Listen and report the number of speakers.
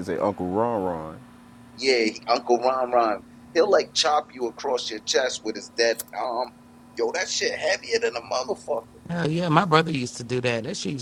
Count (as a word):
three